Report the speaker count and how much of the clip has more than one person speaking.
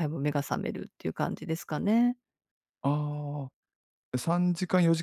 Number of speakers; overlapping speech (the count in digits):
2, no overlap